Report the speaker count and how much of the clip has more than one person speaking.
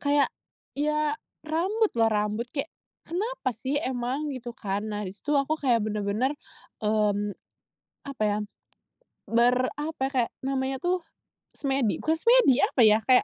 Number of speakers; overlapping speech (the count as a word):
one, no overlap